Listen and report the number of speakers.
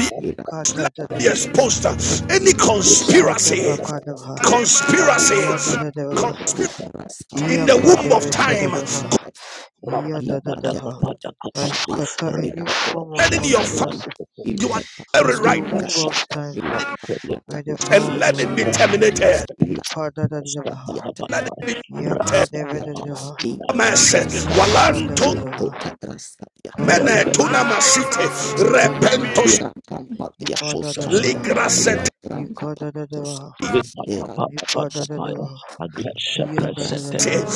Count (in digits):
4